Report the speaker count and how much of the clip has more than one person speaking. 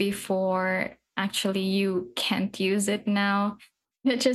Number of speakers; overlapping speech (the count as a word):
one, no overlap